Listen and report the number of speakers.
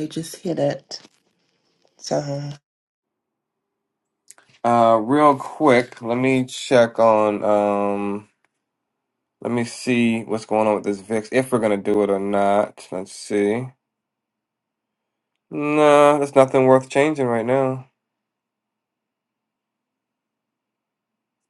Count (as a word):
two